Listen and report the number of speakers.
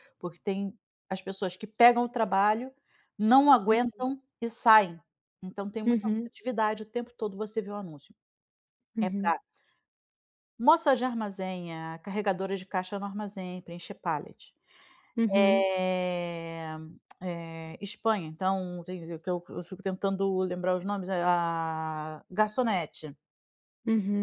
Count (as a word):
two